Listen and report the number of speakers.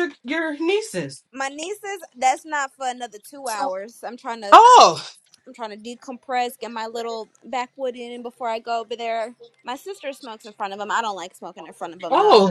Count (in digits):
2